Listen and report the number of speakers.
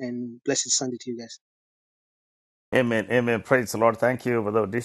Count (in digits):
2